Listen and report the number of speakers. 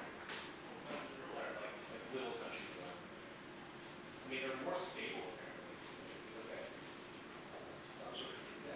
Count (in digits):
1